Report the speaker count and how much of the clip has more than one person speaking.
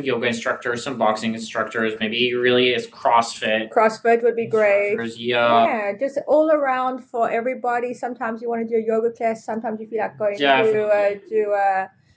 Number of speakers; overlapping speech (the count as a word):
two, about 14%